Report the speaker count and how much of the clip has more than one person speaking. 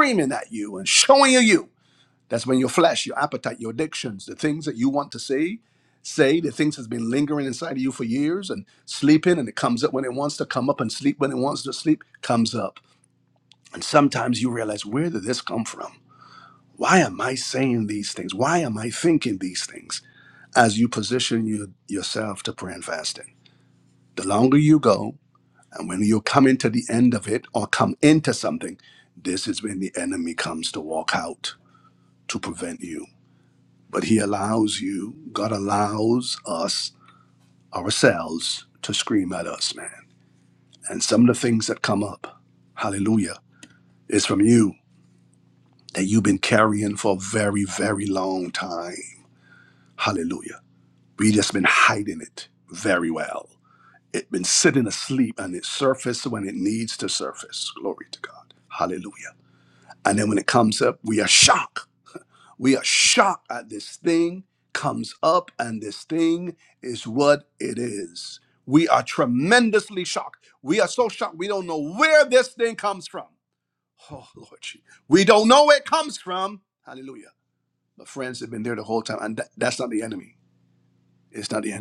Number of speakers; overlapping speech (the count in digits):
1, no overlap